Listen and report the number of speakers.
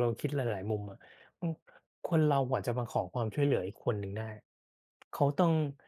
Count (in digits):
1